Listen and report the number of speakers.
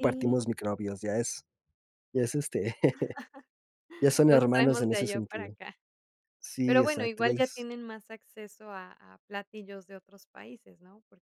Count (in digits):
2